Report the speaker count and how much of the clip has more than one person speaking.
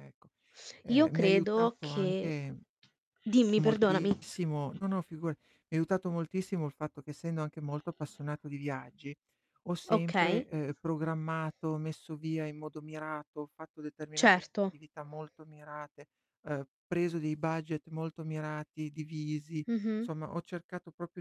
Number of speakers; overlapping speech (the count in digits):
2, about 15%